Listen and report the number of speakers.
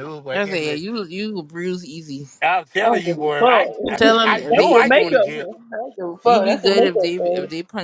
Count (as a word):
three